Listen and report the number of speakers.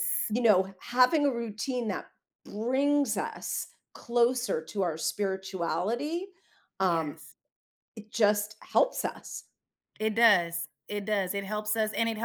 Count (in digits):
2